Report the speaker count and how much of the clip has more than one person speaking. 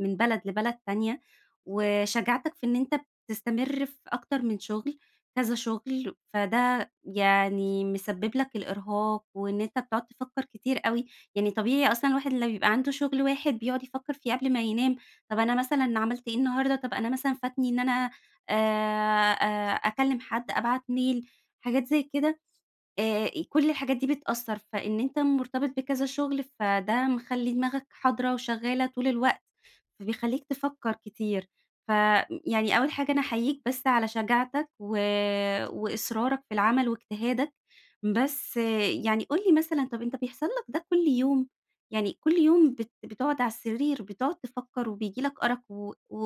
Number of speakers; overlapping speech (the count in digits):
1, no overlap